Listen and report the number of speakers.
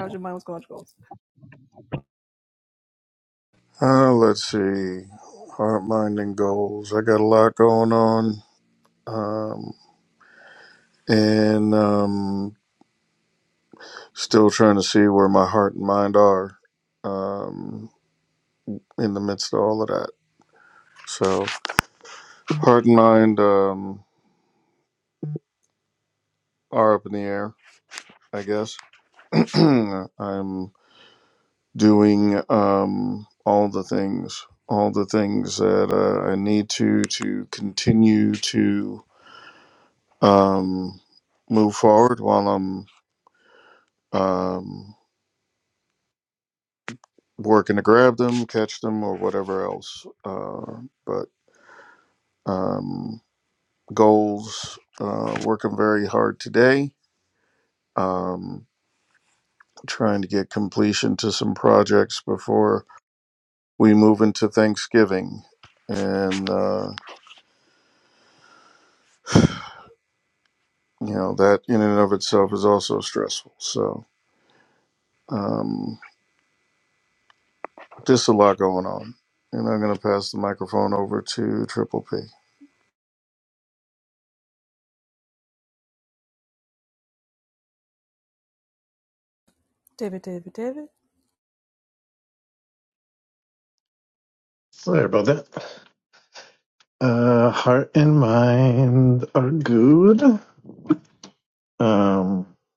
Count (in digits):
3